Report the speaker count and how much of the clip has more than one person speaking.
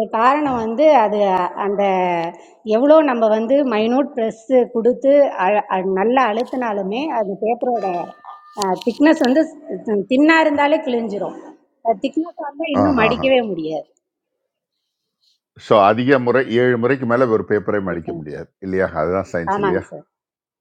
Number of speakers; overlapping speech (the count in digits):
2, about 6%